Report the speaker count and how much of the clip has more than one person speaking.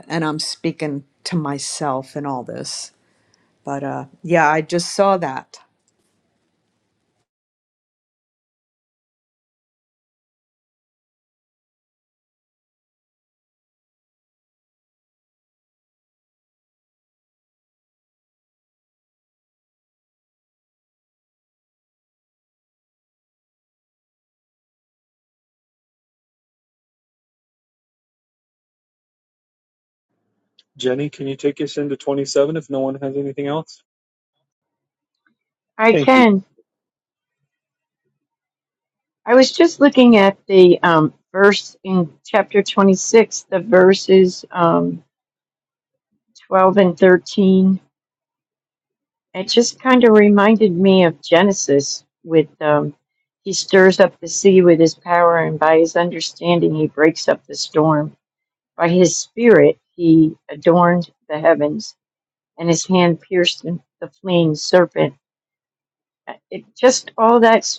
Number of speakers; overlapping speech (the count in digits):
3, under 1%